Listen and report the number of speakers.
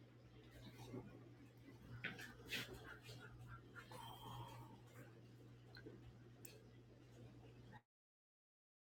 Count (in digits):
0